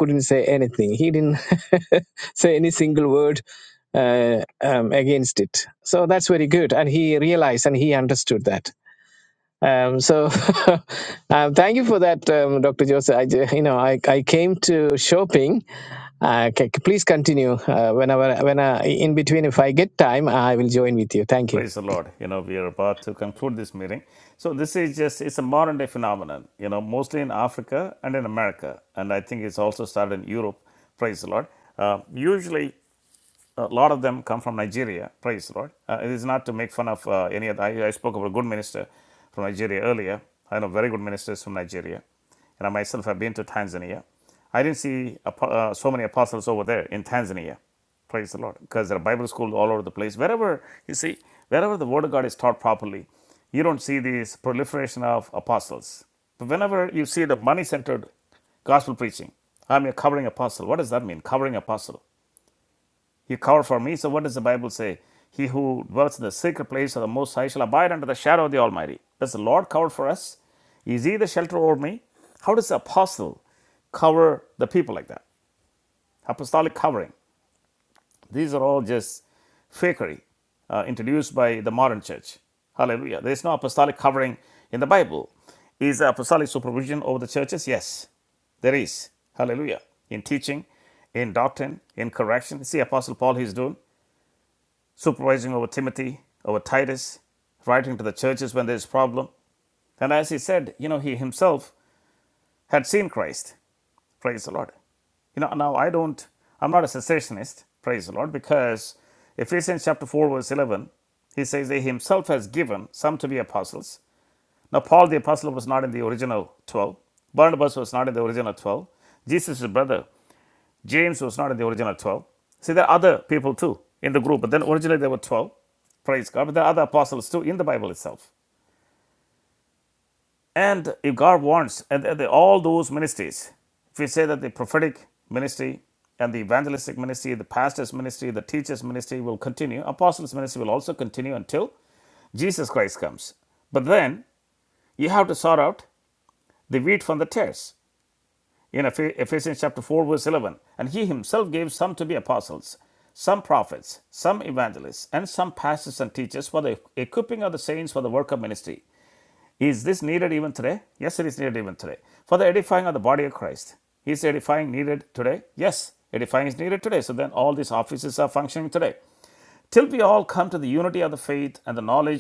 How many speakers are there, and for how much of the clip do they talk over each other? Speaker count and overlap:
2, under 1%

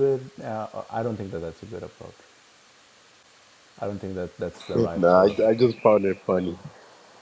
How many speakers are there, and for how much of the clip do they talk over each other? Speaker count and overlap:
2, about 11%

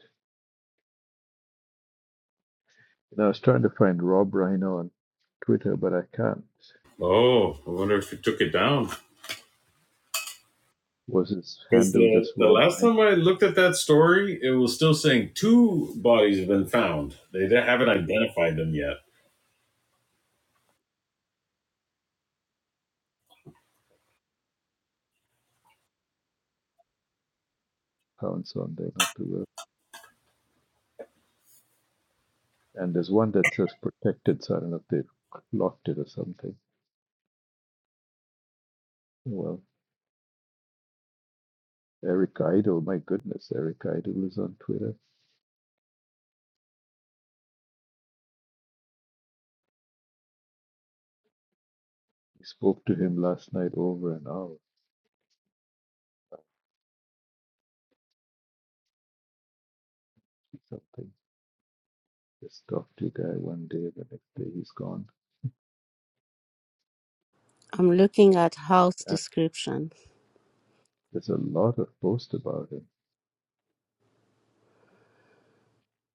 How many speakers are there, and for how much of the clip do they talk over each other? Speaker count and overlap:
3, about 2%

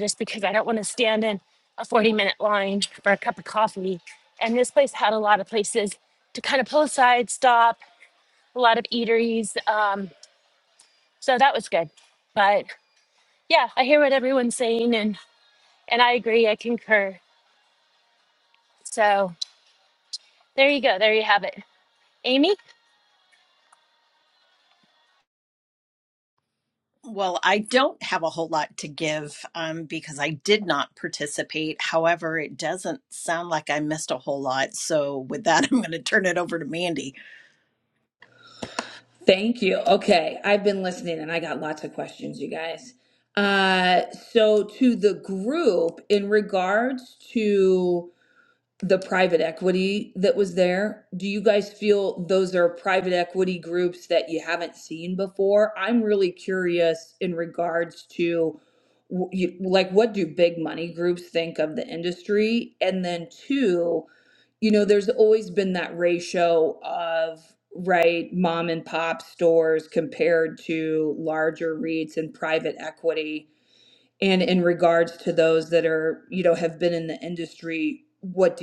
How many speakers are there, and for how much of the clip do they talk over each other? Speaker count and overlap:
3, no overlap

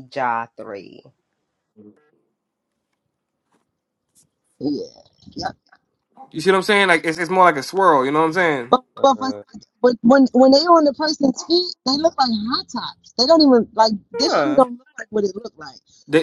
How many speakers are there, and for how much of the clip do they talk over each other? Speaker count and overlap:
3, about 5%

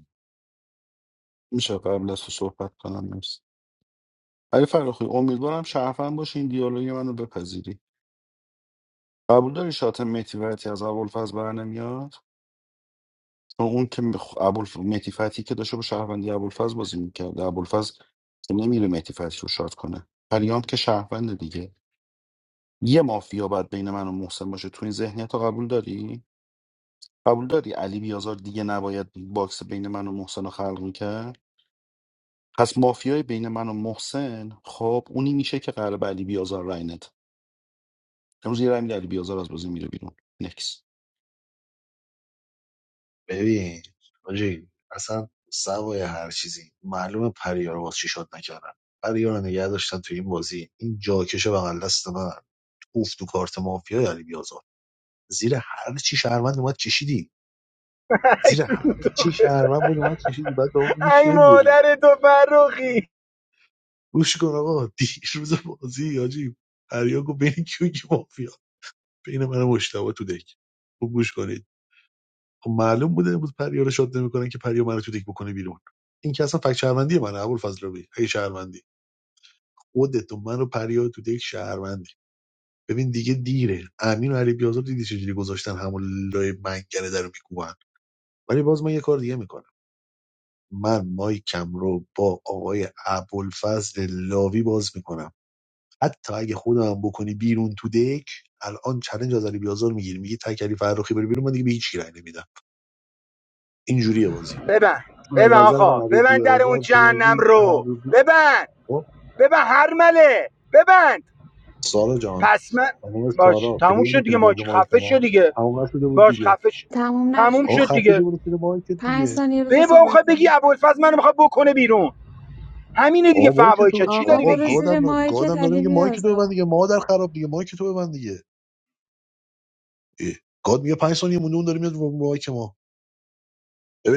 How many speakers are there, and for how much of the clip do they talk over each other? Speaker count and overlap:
4, about 8%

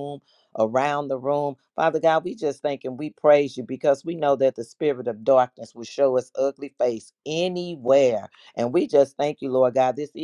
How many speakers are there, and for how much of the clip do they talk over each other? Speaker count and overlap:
1, no overlap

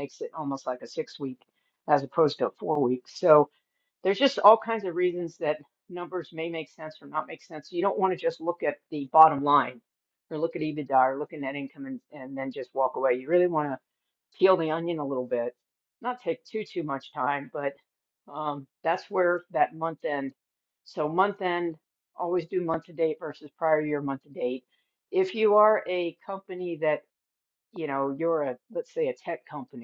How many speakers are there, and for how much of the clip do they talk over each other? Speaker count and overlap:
1, no overlap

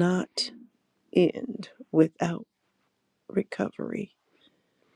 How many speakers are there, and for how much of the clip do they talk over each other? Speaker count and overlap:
1, no overlap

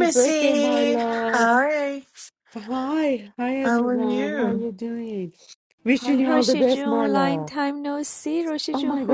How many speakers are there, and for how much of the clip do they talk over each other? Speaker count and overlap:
3, about 45%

